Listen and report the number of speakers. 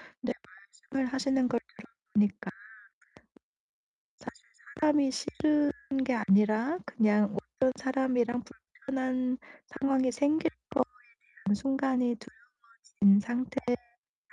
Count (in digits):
1